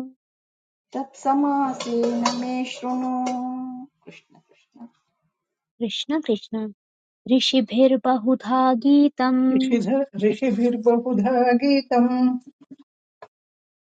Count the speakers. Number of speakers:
three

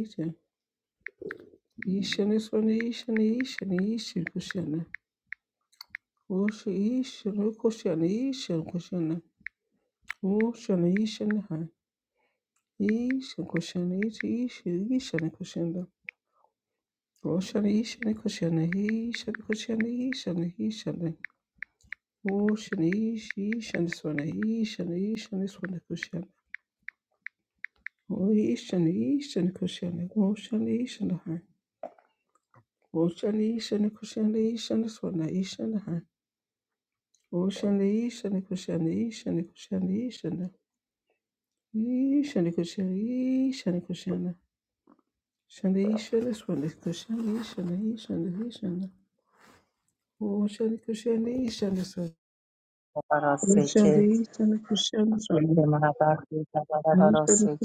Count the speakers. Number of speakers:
two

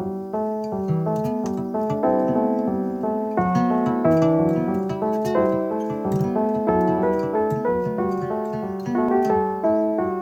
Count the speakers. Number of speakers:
zero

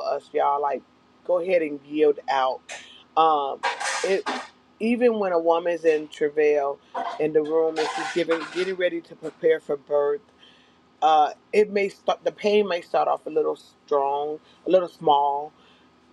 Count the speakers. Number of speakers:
one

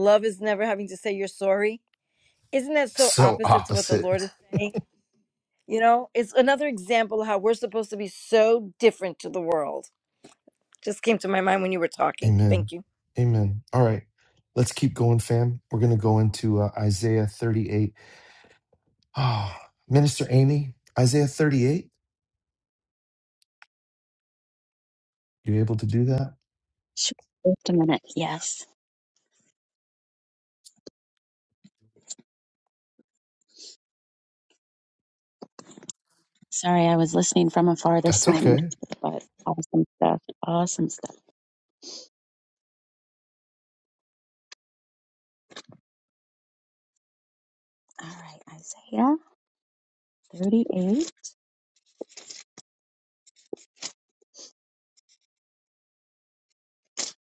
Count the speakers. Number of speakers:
three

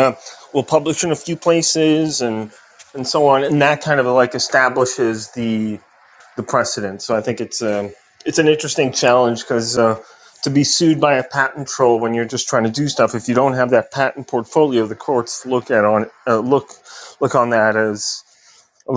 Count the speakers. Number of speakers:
one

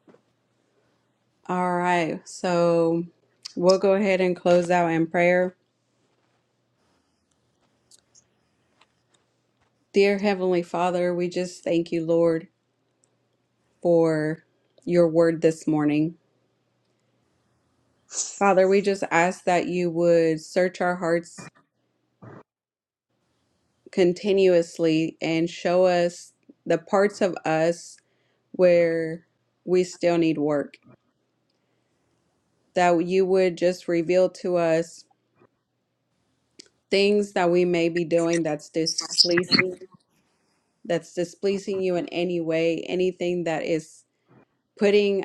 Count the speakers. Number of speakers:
one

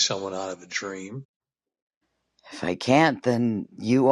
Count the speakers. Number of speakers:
two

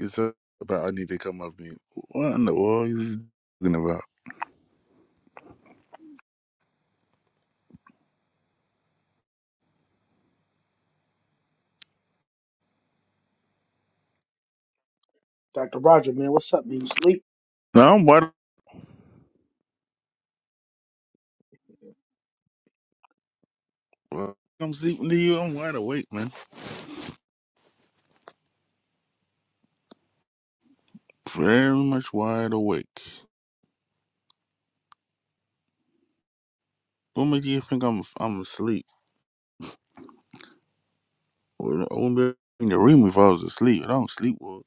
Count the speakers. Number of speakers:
two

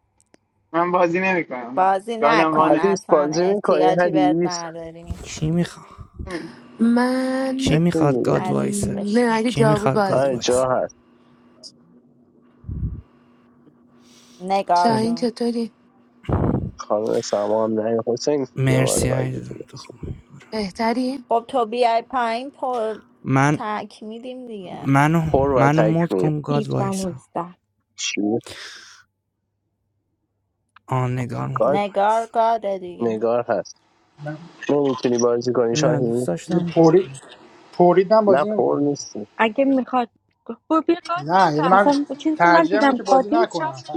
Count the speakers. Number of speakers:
seven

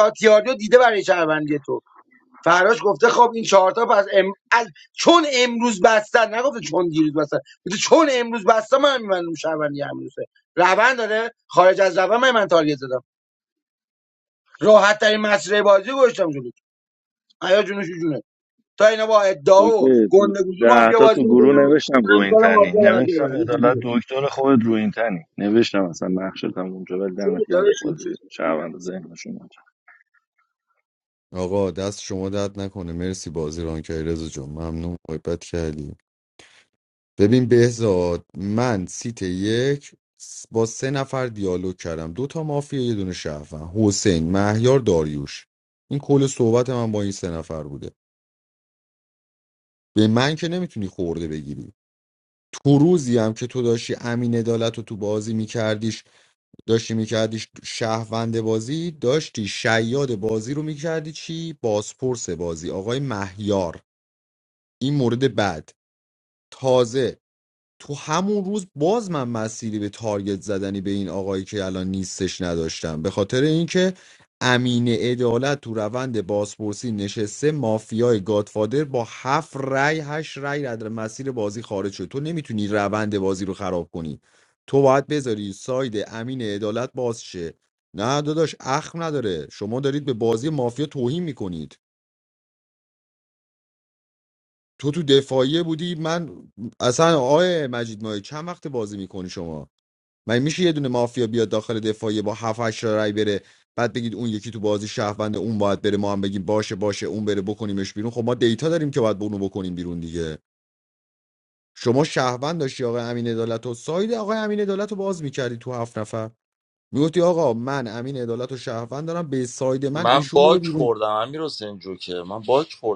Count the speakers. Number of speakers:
four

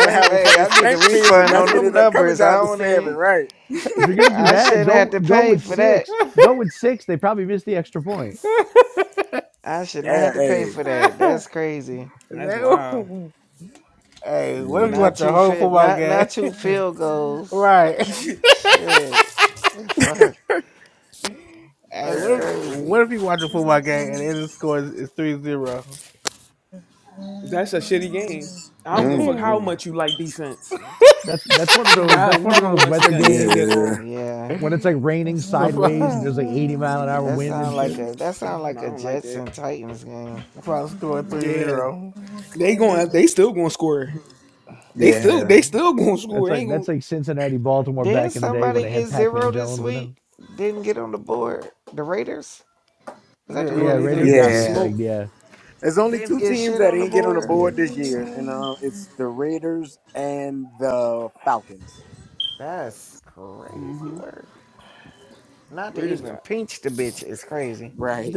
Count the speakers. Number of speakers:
five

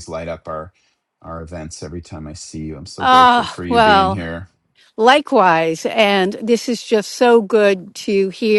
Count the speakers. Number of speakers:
two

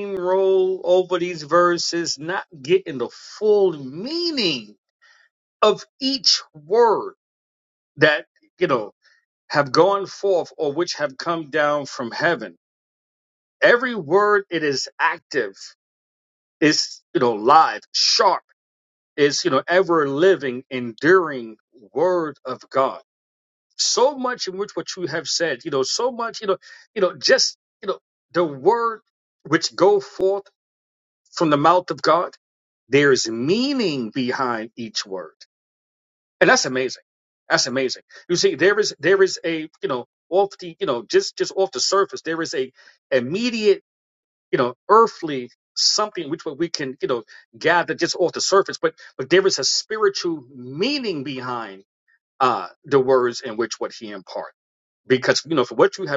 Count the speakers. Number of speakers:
one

